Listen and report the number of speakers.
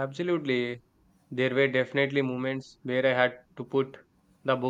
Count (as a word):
one